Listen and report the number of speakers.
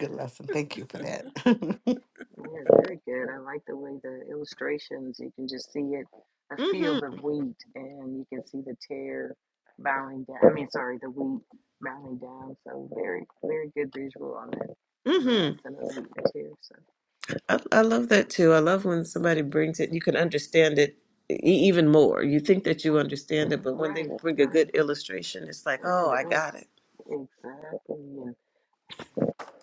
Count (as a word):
three